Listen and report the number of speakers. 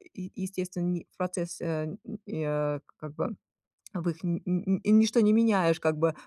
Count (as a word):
one